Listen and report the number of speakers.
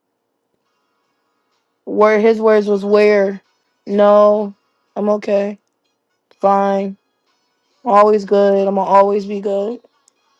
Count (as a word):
one